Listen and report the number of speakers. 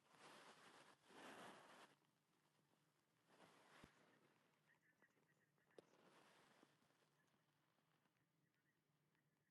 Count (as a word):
zero